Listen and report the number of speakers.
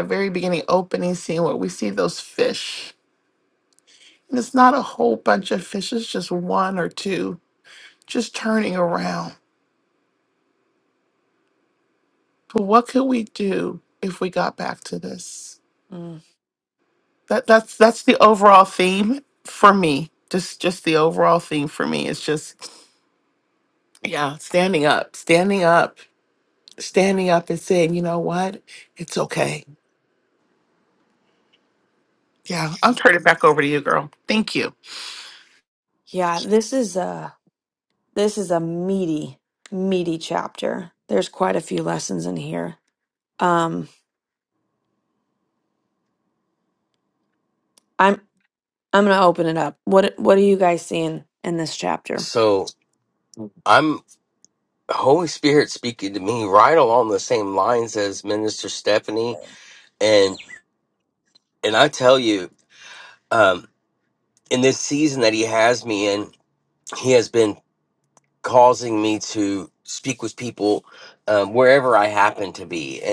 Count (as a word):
three